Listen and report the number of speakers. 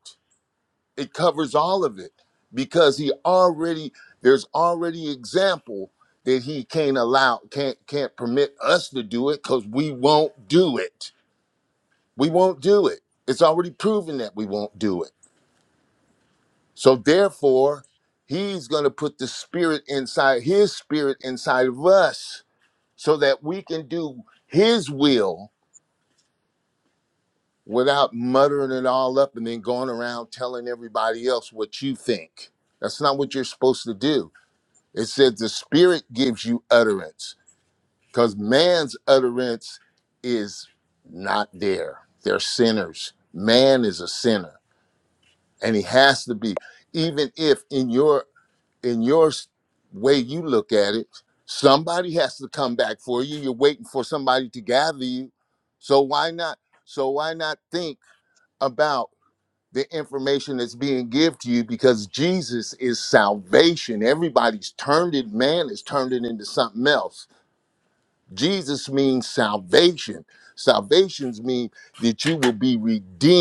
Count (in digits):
1